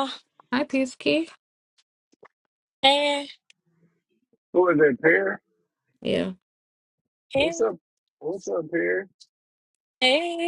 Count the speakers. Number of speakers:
3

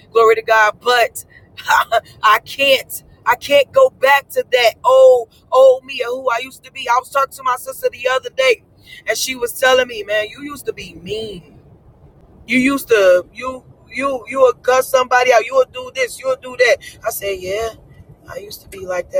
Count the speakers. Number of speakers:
1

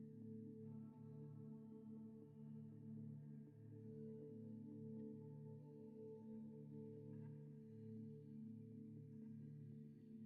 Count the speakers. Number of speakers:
0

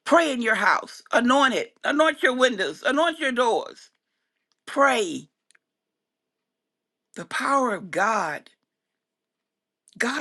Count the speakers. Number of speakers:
1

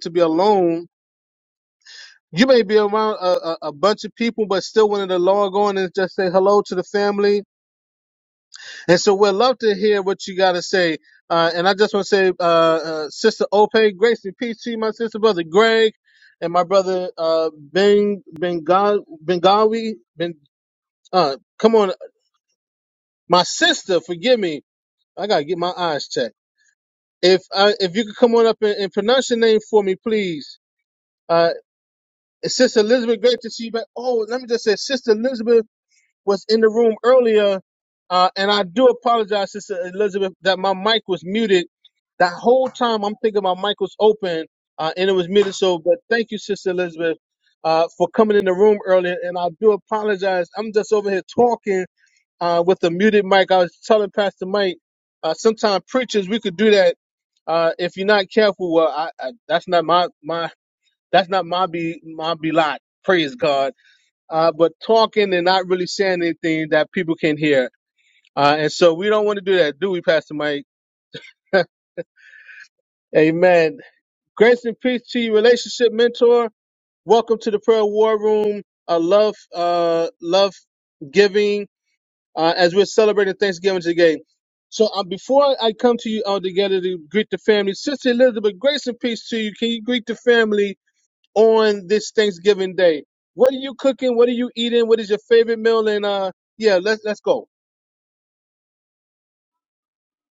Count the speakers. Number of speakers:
1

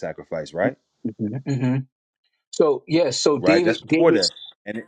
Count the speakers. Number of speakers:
2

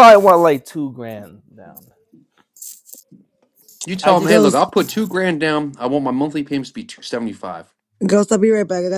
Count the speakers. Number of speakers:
3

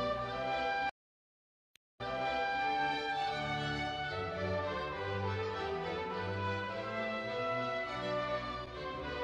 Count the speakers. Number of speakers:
0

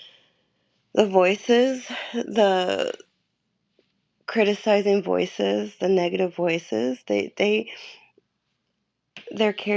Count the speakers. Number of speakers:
1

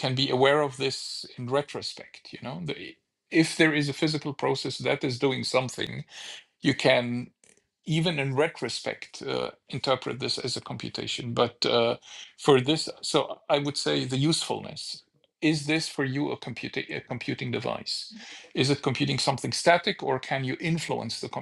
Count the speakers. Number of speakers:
1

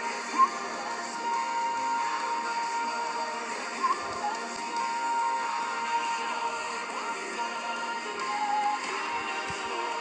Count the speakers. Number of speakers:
0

